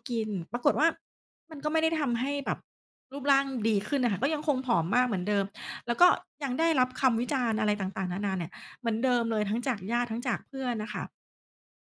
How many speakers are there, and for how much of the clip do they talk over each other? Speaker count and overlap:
1, no overlap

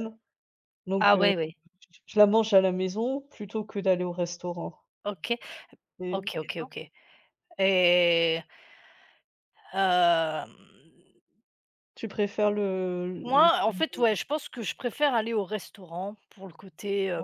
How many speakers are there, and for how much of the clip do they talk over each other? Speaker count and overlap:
2, about 7%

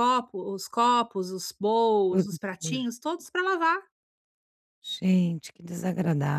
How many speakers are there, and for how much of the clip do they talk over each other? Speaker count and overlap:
2, about 6%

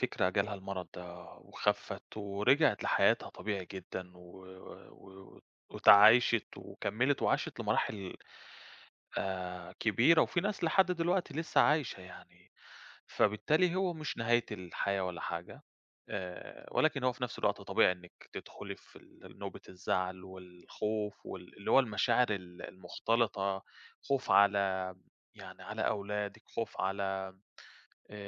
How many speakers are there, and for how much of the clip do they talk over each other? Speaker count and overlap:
1, no overlap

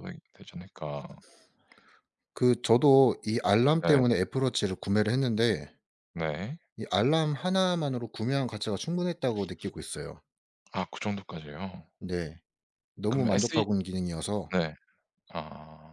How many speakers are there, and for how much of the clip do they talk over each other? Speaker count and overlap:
2, about 5%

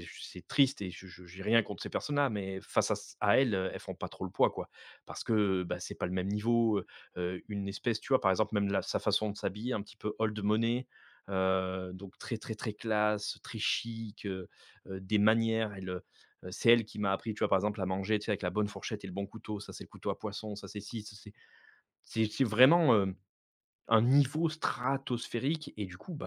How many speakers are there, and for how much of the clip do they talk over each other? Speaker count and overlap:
1, no overlap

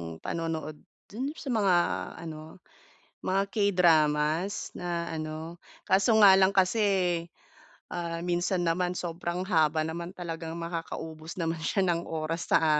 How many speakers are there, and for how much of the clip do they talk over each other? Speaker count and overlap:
1, no overlap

